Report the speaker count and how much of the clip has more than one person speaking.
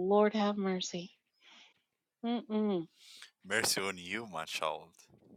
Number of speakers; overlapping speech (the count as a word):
two, no overlap